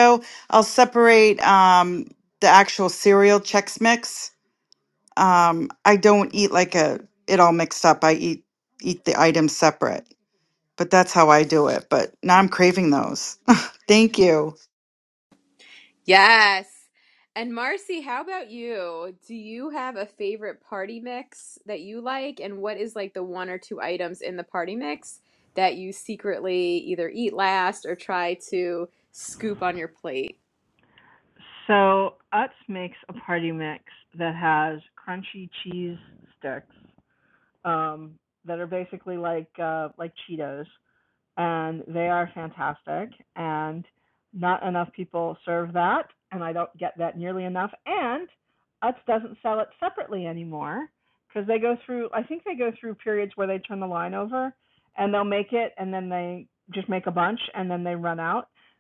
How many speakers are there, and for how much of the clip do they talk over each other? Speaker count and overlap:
3, no overlap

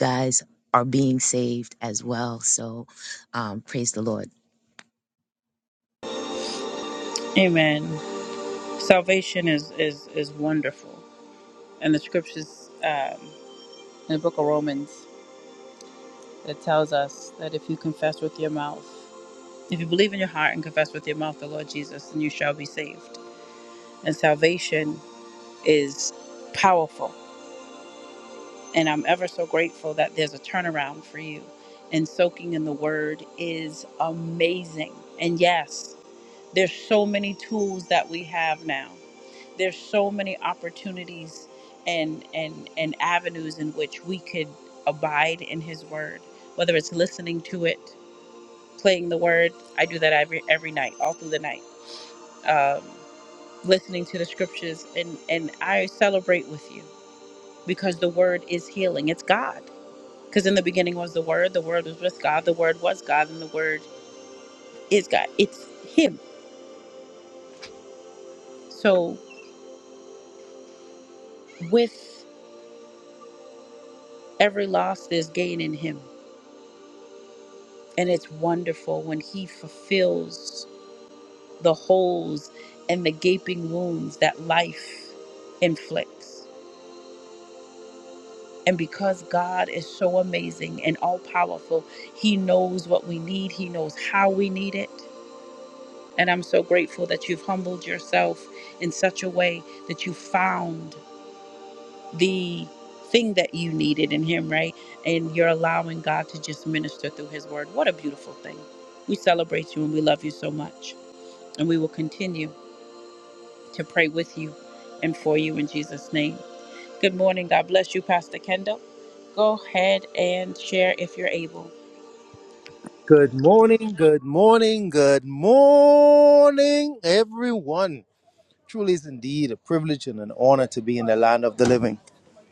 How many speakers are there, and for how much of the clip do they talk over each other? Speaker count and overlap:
3, no overlap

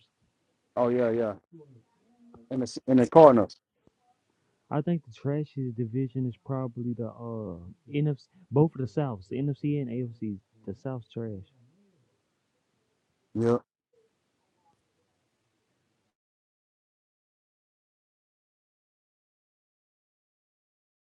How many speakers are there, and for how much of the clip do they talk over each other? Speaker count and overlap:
2, no overlap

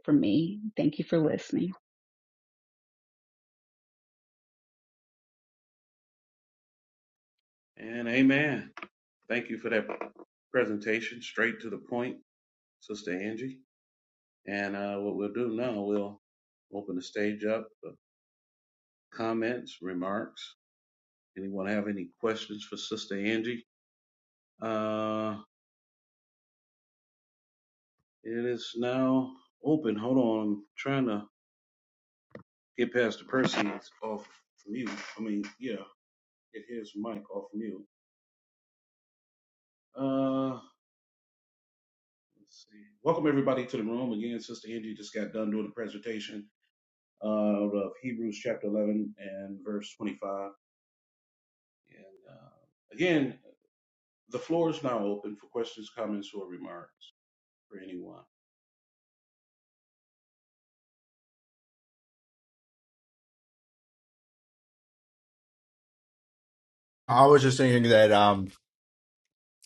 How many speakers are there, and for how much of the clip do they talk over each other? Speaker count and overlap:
3, no overlap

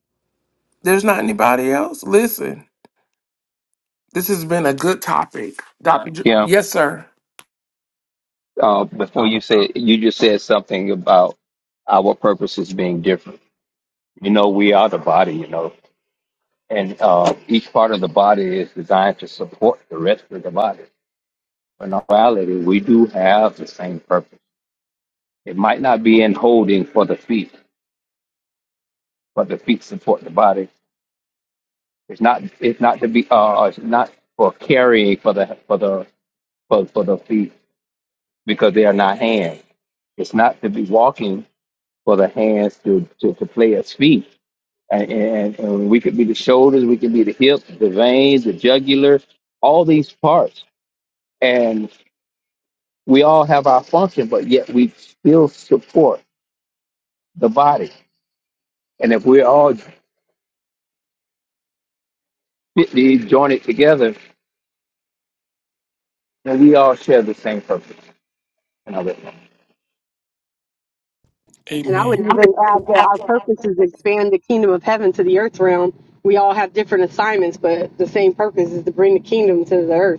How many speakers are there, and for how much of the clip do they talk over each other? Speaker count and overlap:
3, about 1%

